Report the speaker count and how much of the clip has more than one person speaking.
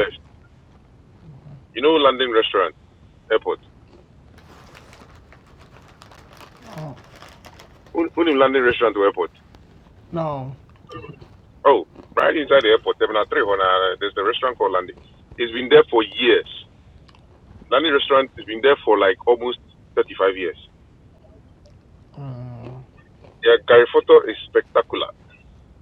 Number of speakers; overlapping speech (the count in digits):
2, no overlap